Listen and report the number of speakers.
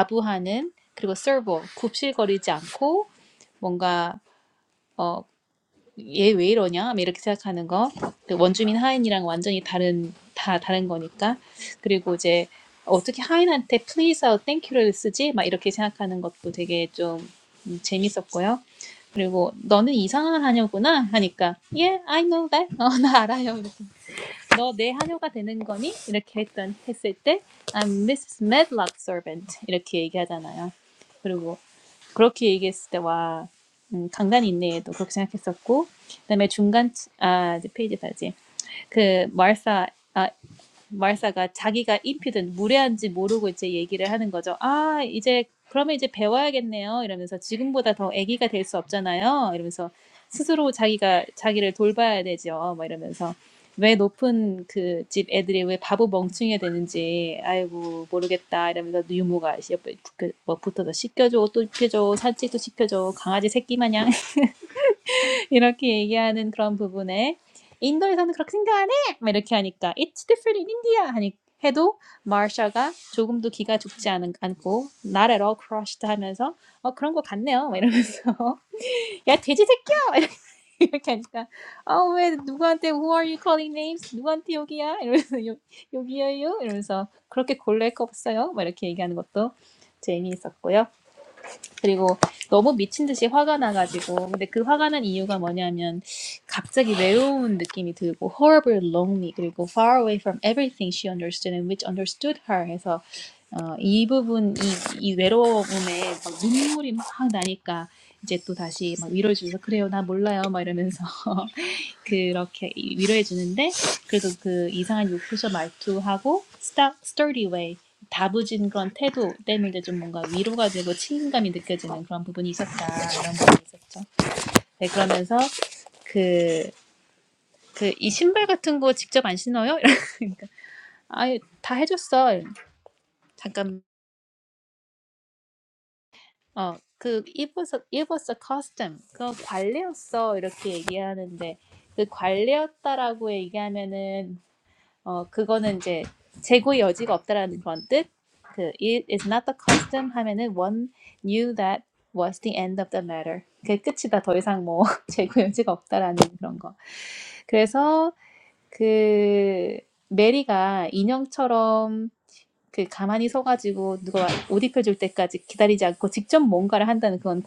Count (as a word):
one